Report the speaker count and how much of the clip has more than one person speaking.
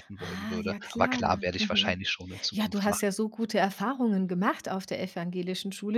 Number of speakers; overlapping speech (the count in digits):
2, about 32%